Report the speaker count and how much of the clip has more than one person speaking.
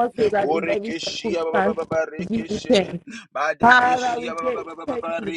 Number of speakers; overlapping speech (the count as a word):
two, about 69%